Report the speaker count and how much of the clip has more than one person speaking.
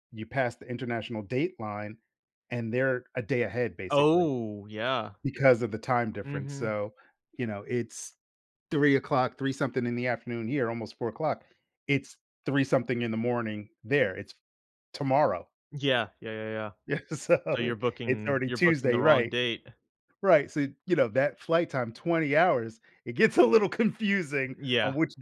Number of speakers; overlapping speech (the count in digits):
2, about 11%